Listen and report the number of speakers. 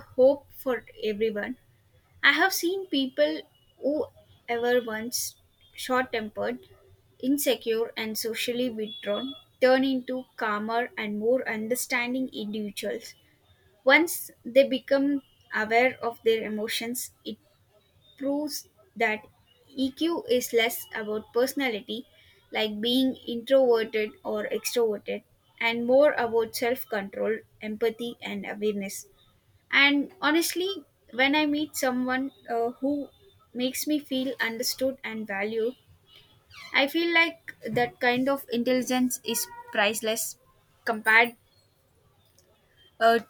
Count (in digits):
1